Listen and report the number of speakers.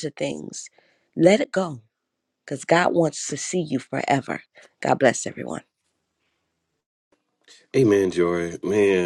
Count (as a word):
two